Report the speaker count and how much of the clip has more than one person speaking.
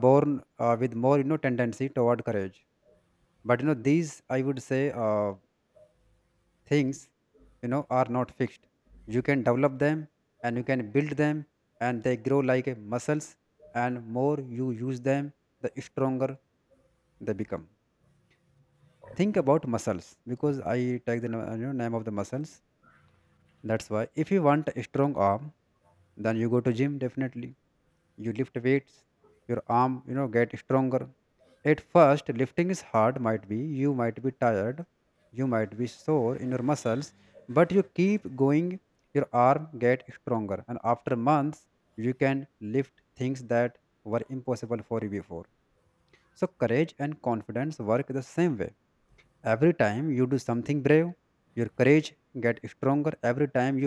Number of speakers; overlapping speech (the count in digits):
1, no overlap